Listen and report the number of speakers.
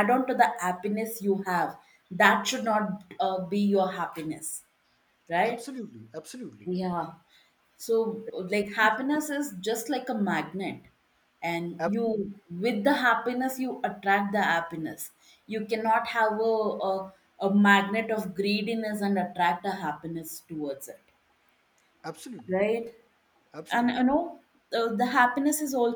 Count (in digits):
2